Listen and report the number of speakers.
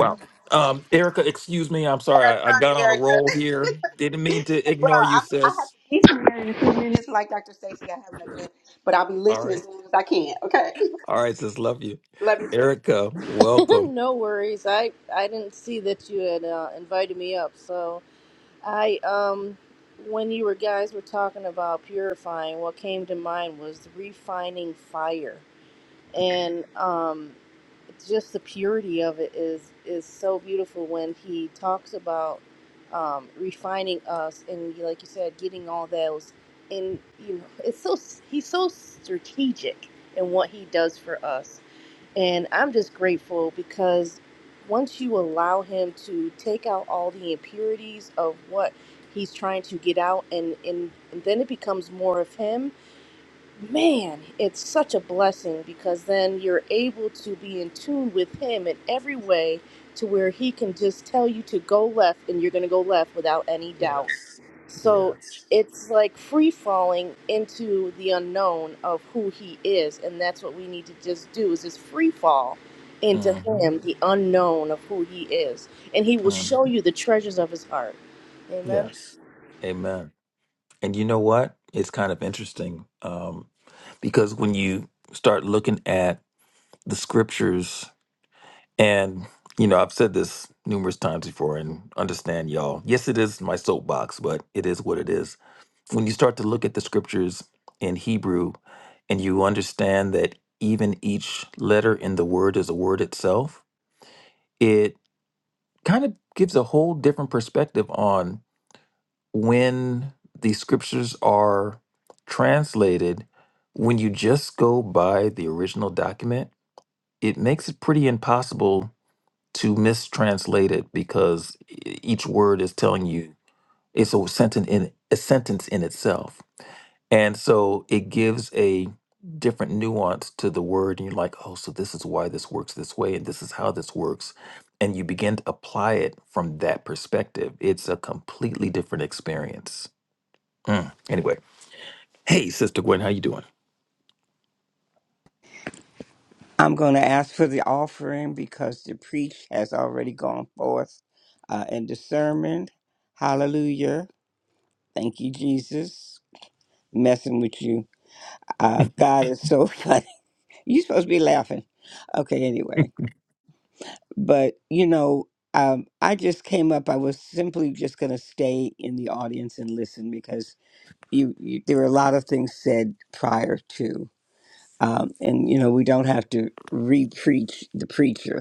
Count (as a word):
four